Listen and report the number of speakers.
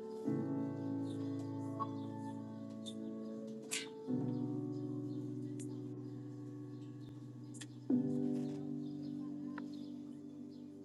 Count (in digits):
0